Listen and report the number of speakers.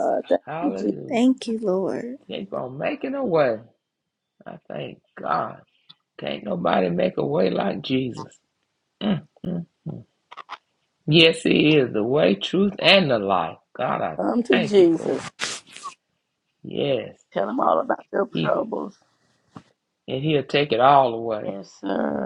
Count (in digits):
3